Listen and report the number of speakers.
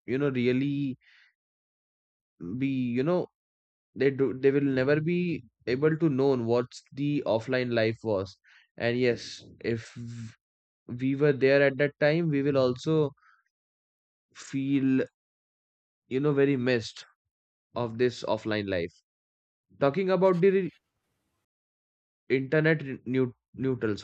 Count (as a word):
one